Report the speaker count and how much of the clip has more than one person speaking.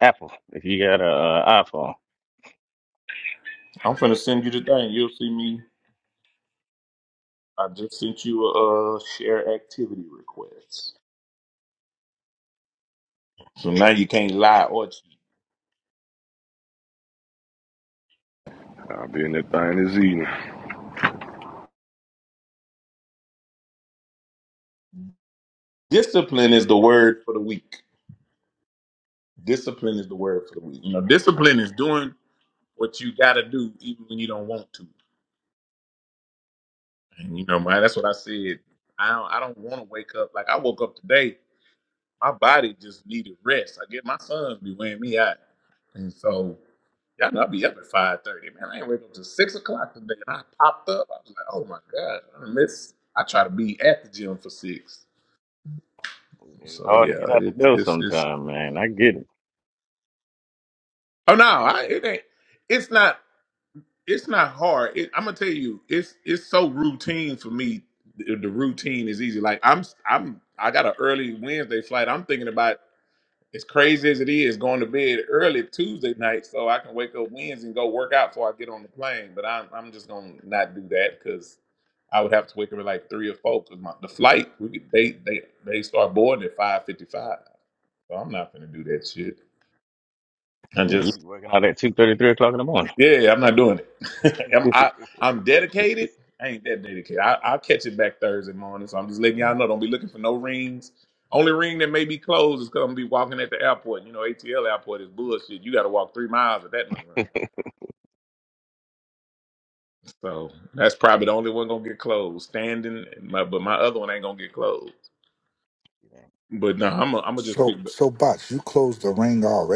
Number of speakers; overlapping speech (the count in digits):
4, about 2%